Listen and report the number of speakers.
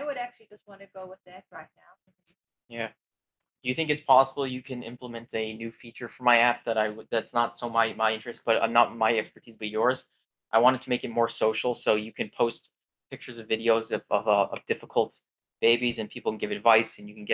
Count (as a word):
two